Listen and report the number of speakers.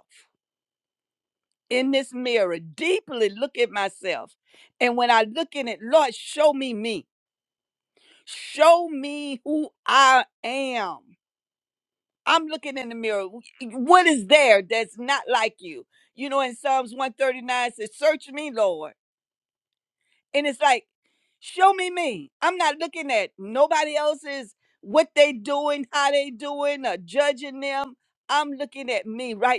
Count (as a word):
one